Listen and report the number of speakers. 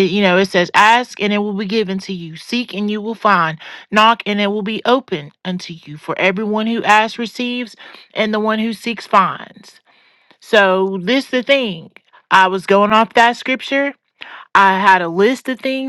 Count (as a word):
one